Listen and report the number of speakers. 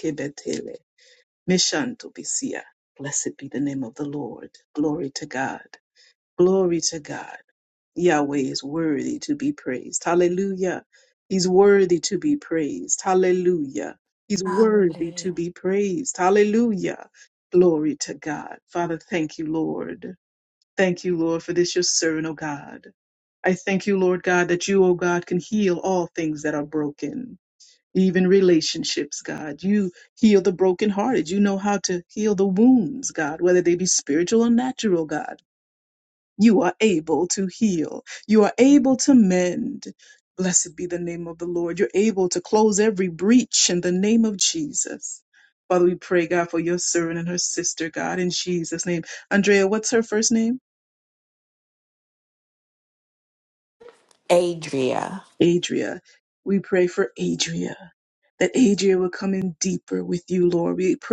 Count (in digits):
2